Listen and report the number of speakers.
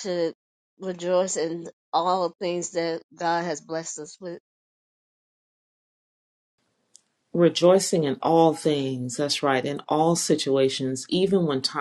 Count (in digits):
2